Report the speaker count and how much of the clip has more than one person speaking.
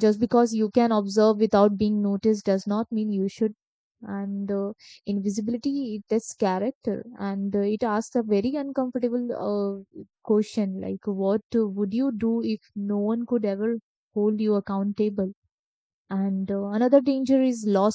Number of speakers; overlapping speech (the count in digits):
1, no overlap